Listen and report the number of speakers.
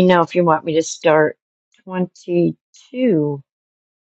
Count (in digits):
1